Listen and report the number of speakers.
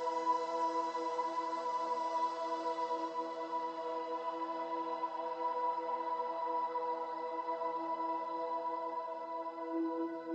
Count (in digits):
0